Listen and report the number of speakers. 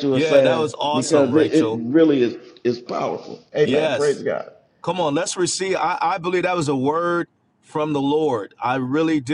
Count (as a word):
two